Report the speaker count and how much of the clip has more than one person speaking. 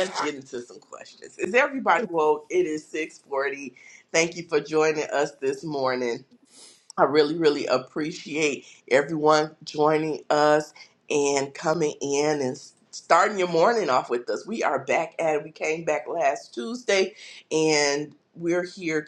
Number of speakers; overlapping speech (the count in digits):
1, no overlap